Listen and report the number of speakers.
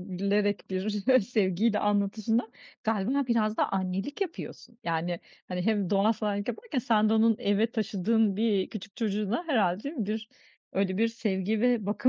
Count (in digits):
1